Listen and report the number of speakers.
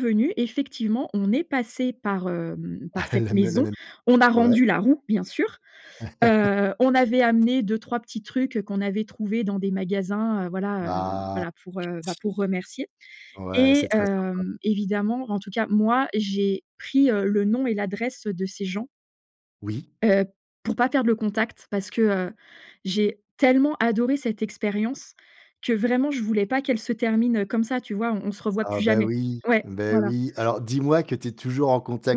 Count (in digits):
2